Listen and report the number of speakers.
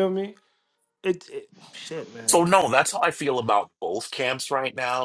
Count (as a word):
two